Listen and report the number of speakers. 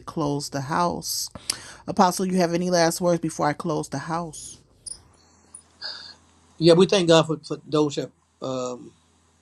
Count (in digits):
2